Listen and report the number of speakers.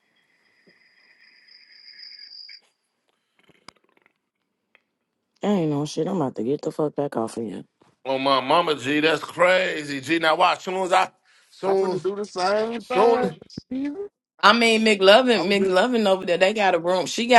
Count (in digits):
3